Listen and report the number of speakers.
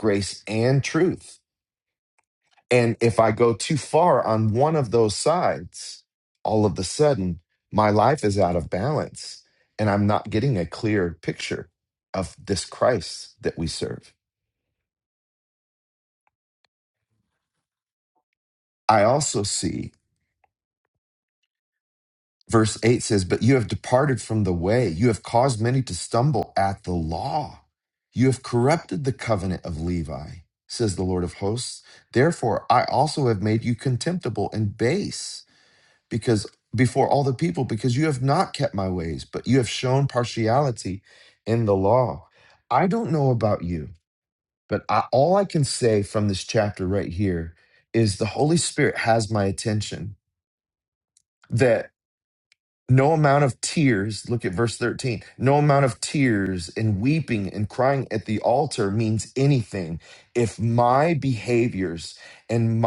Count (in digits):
1